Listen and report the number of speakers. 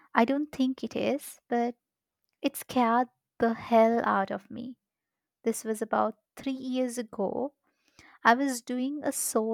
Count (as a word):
one